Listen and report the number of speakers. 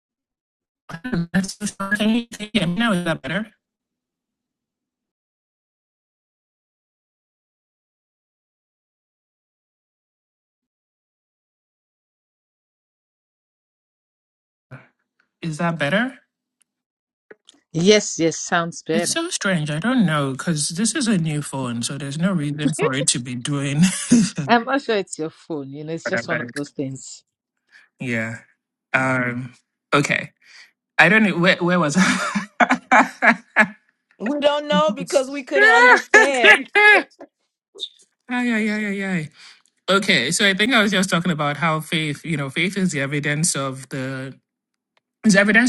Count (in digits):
3